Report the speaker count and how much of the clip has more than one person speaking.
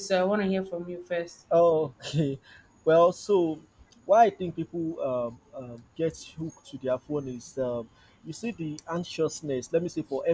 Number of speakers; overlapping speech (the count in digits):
2, no overlap